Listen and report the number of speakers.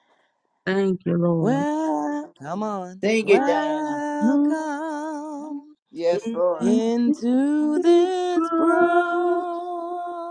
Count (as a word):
three